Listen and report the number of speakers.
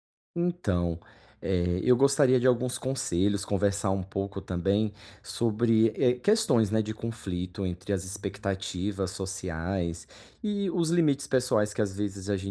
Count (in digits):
1